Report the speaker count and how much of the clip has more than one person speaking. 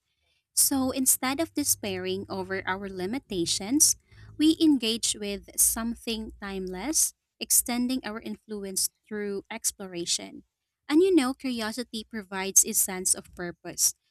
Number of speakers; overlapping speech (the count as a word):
one, no overlap